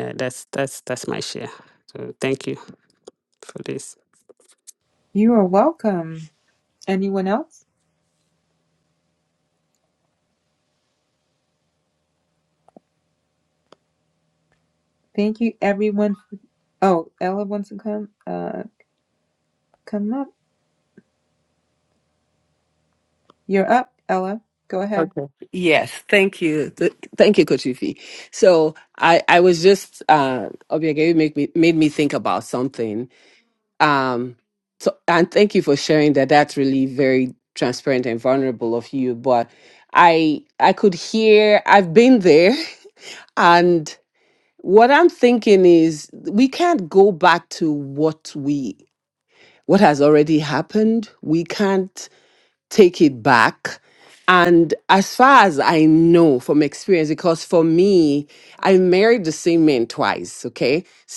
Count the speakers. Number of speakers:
three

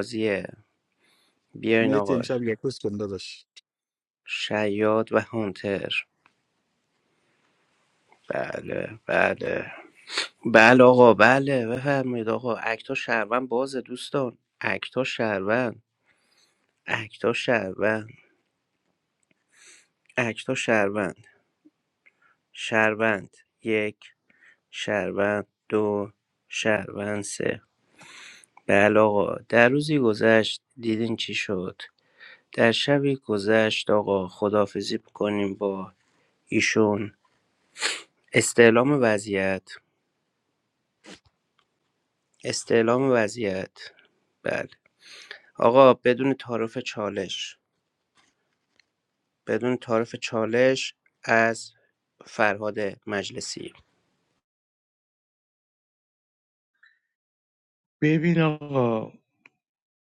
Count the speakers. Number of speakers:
three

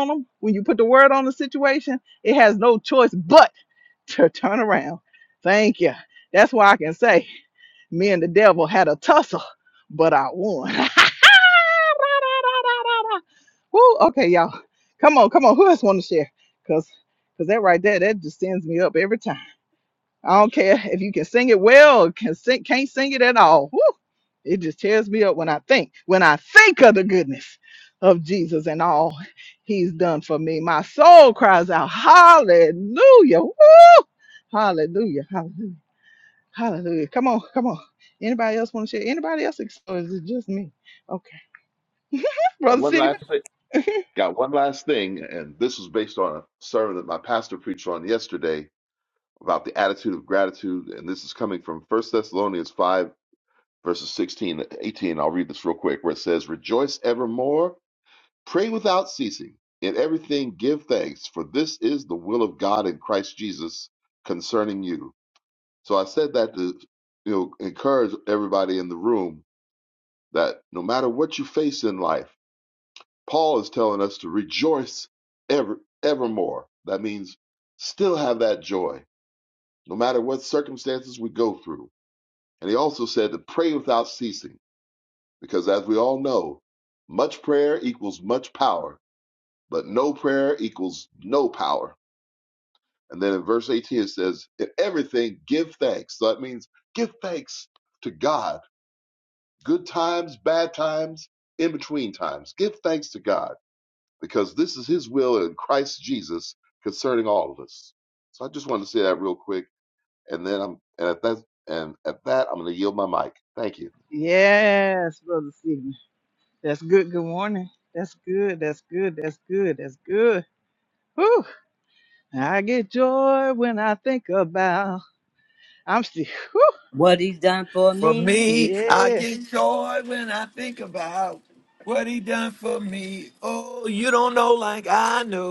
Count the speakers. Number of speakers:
four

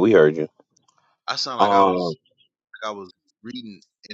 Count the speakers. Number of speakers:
two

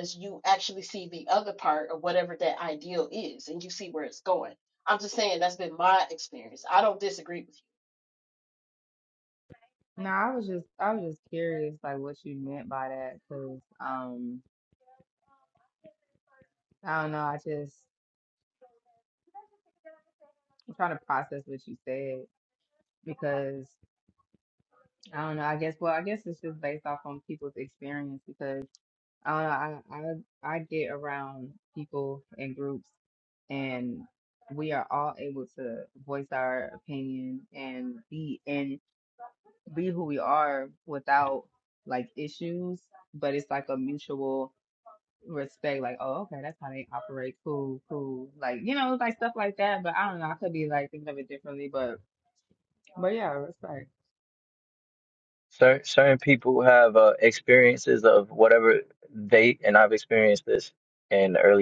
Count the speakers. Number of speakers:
three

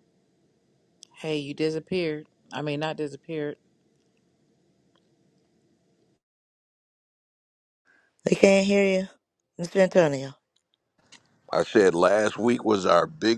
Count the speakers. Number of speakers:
three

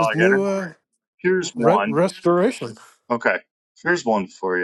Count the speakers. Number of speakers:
two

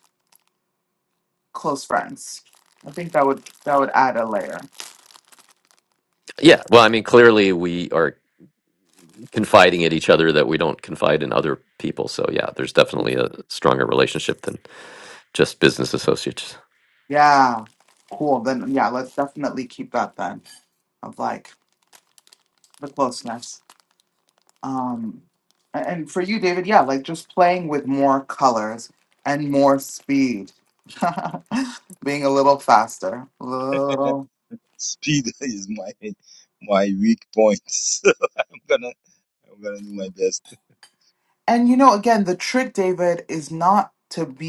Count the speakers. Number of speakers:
three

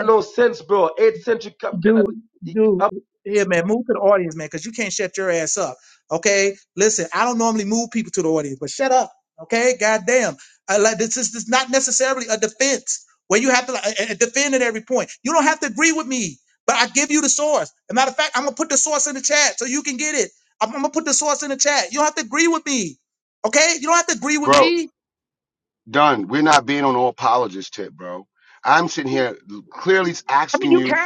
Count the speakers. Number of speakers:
three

